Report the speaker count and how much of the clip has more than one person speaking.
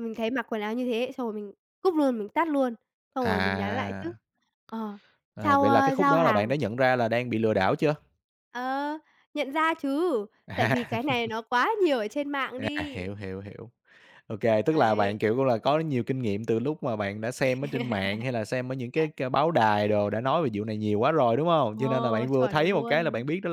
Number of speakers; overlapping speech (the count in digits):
2, about 20%